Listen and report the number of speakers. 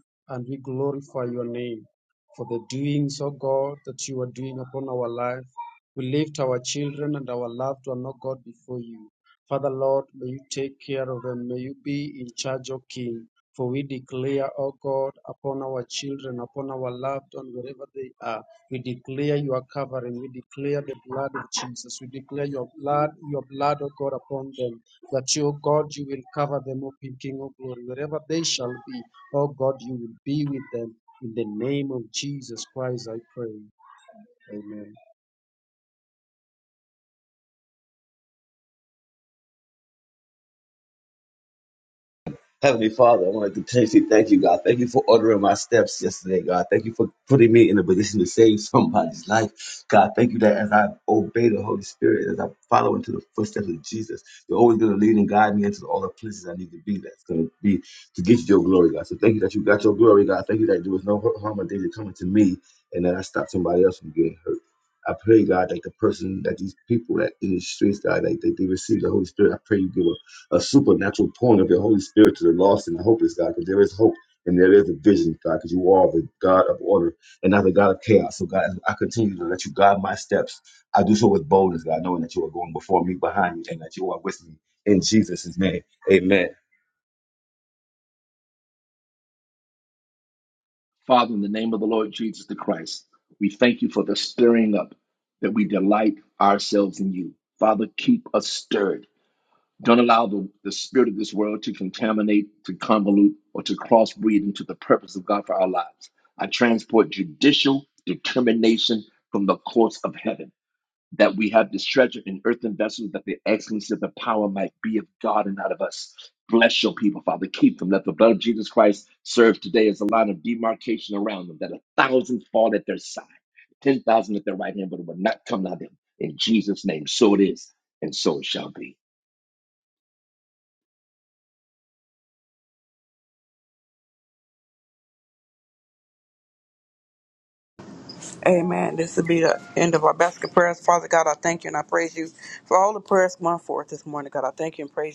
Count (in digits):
4